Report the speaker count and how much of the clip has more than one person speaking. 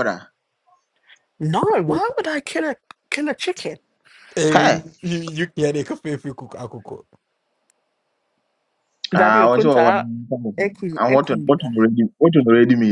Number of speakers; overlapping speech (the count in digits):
3, about 14%